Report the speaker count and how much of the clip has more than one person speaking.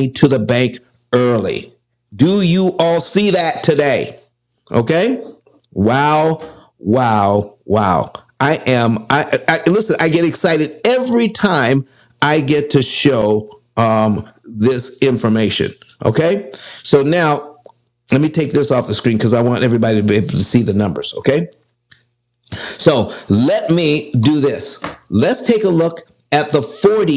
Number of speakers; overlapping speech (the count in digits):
1, no overlap